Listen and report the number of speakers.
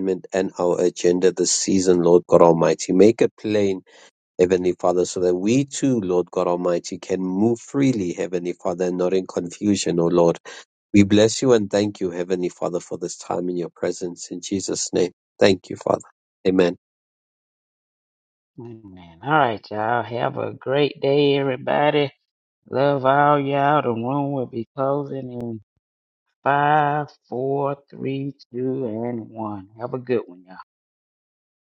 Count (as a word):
two